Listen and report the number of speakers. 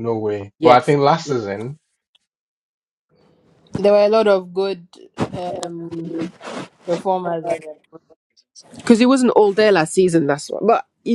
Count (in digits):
3